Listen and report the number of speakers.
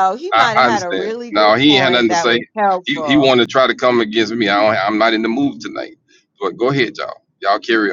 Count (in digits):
2